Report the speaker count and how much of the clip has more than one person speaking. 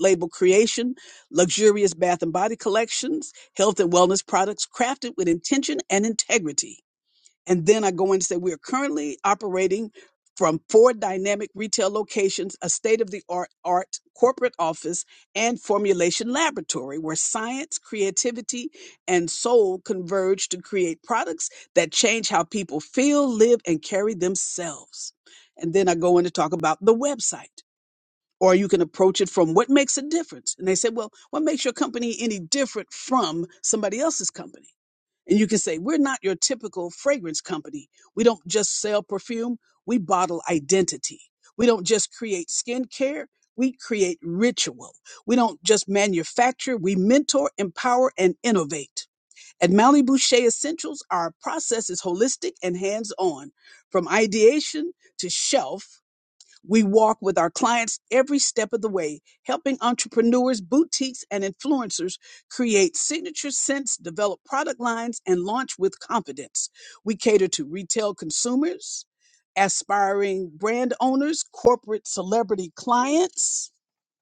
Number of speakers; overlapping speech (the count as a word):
one, no overlap